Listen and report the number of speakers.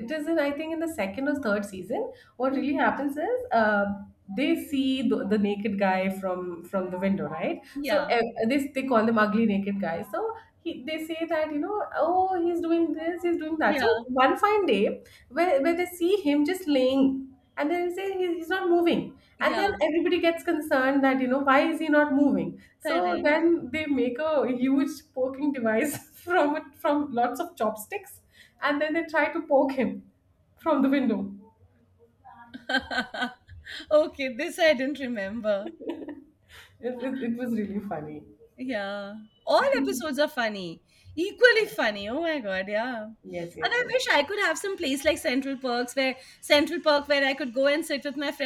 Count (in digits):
2